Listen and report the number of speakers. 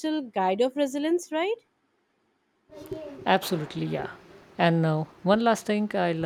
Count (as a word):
two